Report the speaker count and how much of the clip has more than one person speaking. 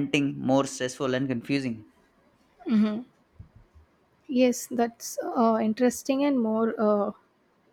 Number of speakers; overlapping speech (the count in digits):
2, no overlap